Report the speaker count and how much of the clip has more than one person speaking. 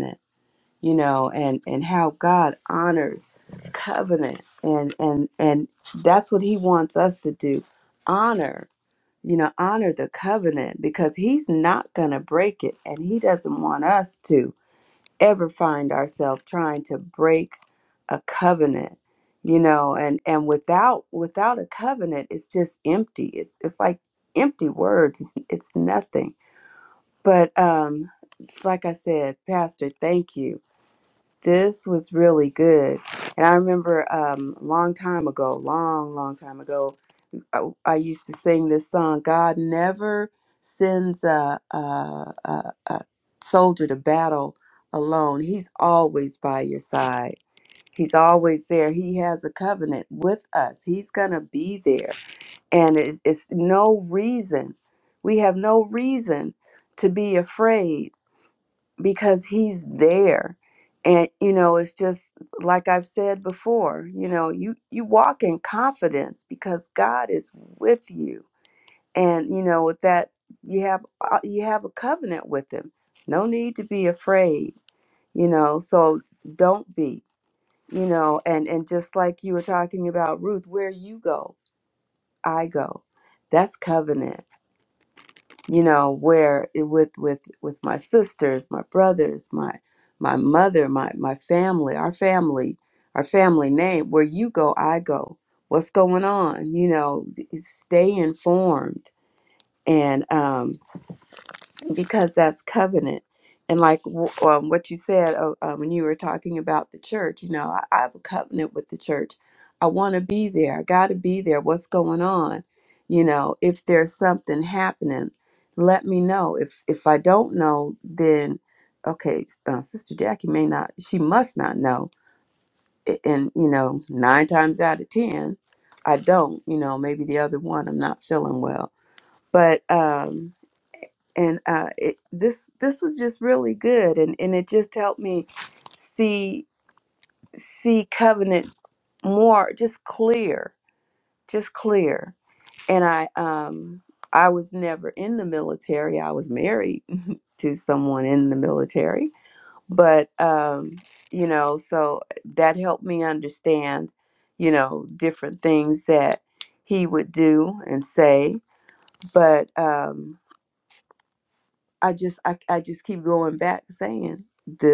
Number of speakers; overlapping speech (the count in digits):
1, no overlap